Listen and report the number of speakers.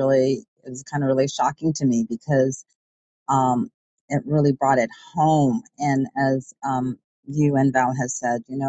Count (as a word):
one